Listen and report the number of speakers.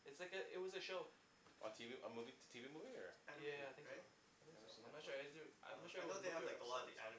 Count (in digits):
3